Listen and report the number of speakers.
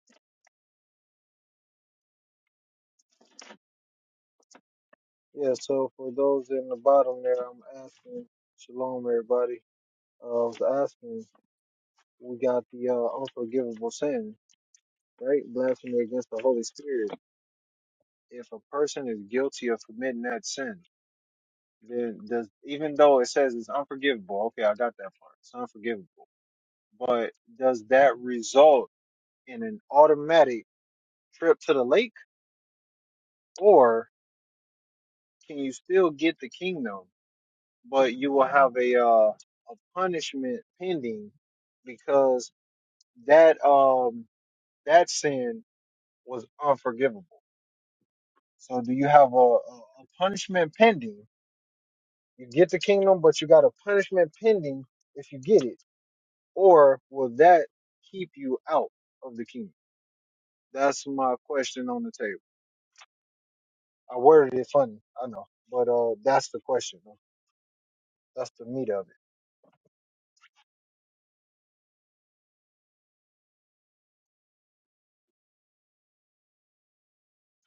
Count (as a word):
one